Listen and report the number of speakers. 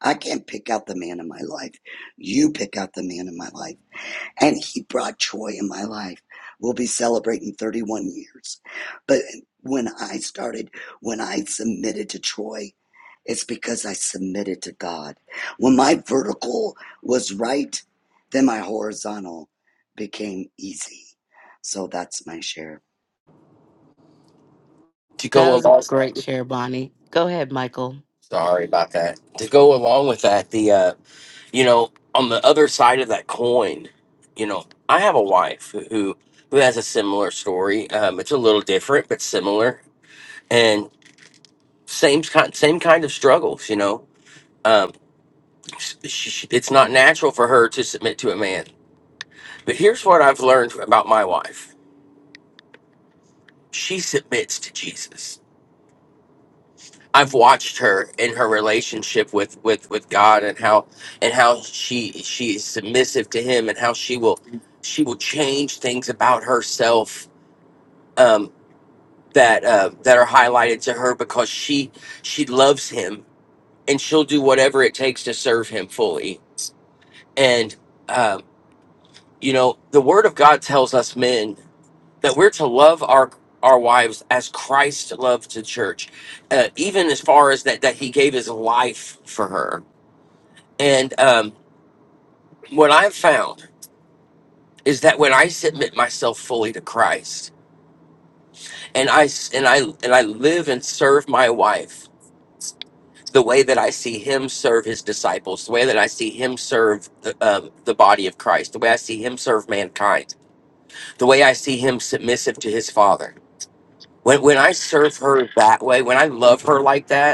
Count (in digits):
3